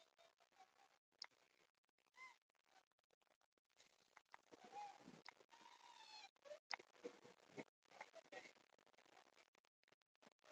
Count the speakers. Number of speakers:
0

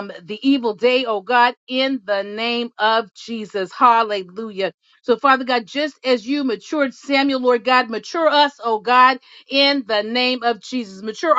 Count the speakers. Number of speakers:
1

